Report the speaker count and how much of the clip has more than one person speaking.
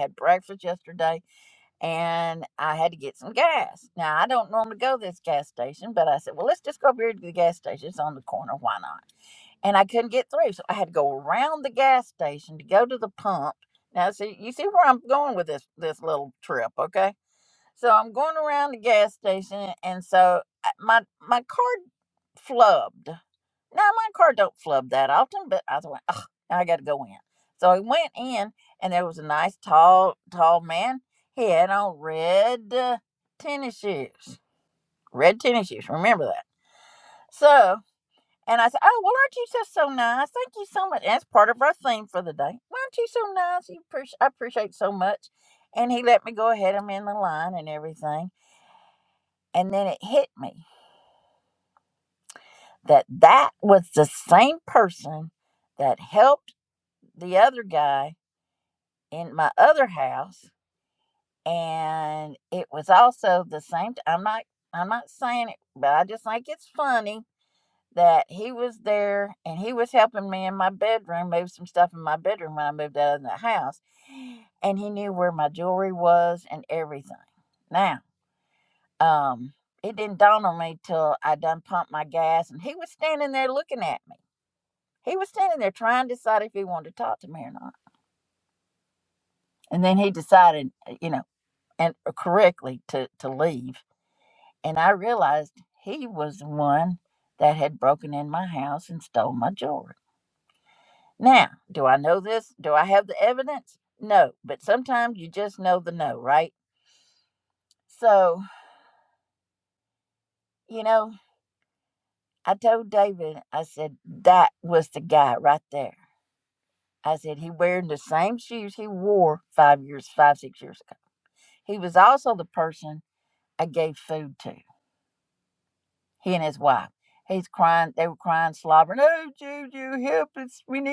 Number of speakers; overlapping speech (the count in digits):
1, no overlap